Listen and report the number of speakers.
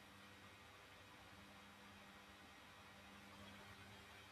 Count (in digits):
0